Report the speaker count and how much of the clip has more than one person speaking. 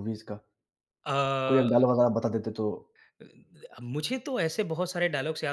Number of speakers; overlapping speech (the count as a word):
two, about 4%